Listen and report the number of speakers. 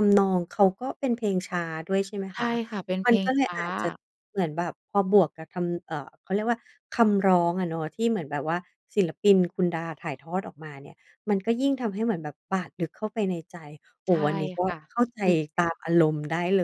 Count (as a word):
two